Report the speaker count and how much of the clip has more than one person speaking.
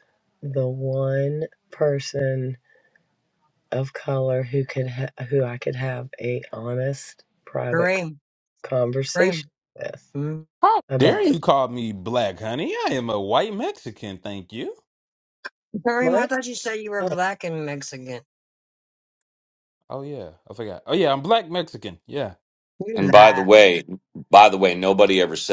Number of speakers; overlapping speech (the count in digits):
4, about 8%